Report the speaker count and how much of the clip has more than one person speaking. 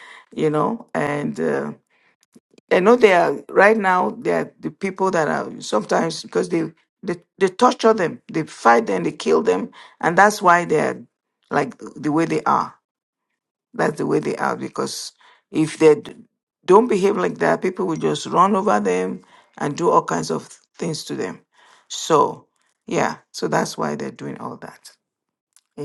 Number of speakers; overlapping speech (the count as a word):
one, no overlap